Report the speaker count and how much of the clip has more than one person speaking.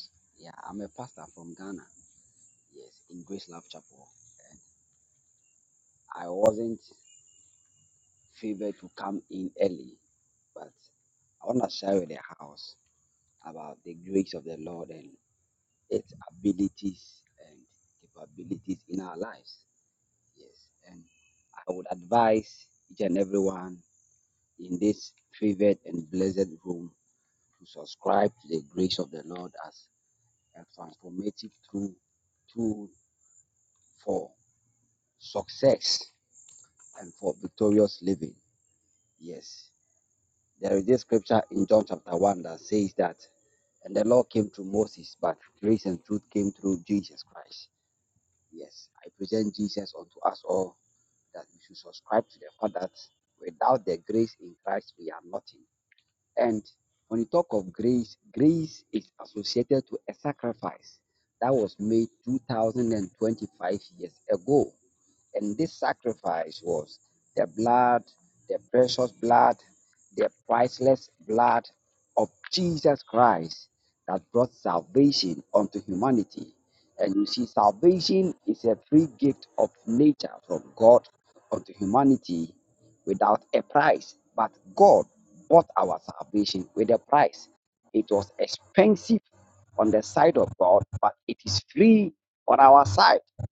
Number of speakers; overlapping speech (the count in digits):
1, no overlap